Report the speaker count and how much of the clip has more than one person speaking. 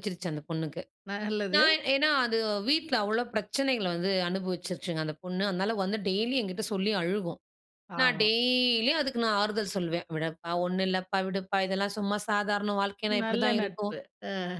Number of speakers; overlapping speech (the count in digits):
2, about 9%